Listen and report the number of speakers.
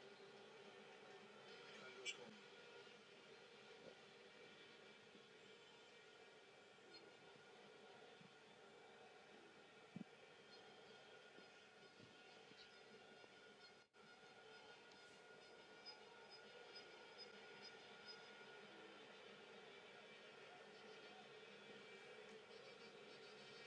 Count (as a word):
zero